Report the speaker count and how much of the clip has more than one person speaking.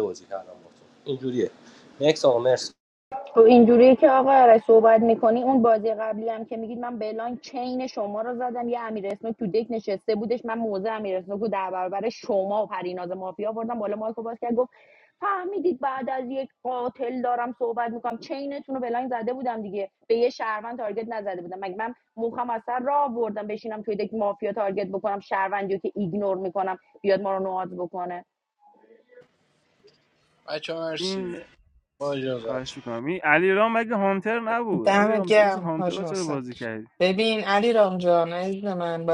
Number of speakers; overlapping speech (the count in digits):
5, about 6%